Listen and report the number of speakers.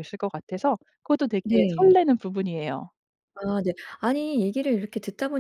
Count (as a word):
two